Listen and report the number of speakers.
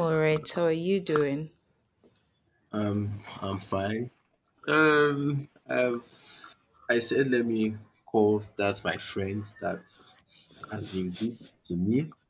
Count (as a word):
two